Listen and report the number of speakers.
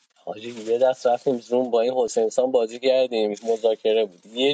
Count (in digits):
1